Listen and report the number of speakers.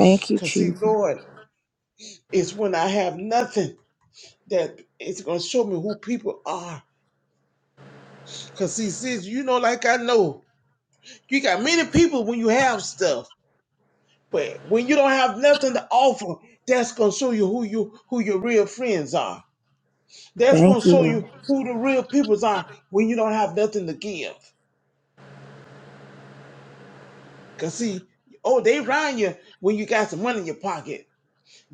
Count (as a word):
two